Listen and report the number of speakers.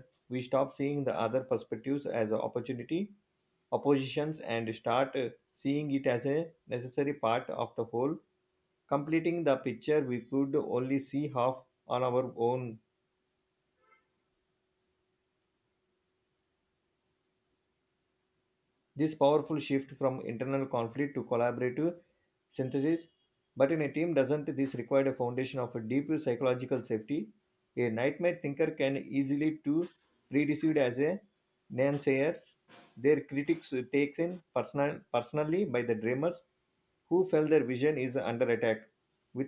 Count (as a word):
one